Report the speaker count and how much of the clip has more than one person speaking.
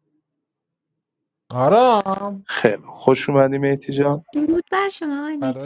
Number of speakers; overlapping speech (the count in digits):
3, about 2%